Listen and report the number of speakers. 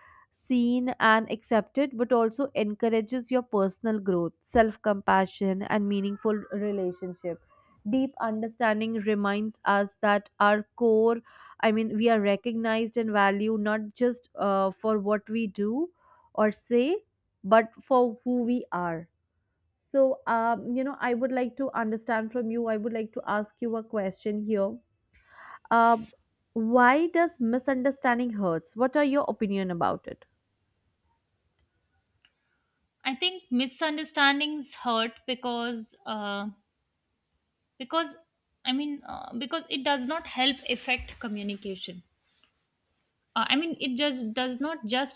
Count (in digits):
2